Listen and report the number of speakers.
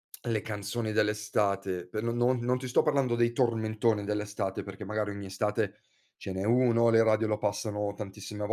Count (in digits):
1